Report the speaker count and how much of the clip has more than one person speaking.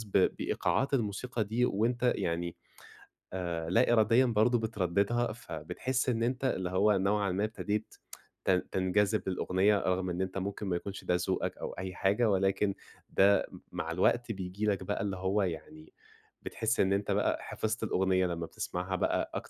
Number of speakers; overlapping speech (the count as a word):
one, no overlap